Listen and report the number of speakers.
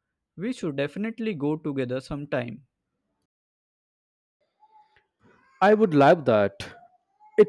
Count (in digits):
2